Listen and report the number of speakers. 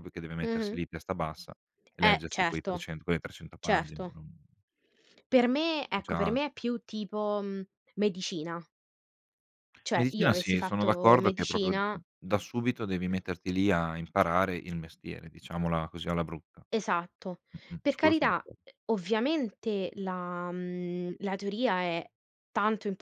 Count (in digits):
2